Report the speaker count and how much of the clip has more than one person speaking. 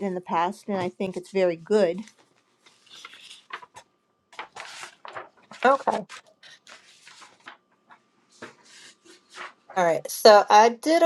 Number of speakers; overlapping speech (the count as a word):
two, no overlap